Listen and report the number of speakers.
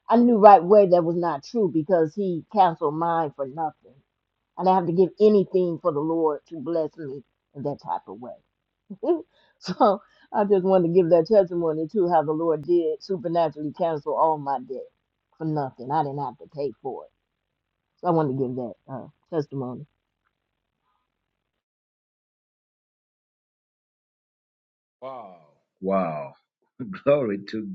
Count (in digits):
2